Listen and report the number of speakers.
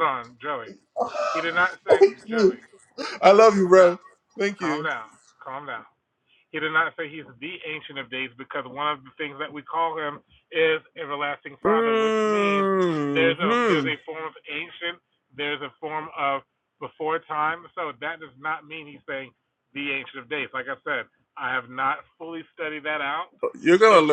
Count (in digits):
2